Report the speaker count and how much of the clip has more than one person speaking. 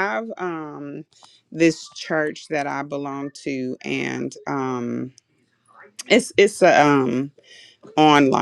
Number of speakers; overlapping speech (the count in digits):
1, no overlap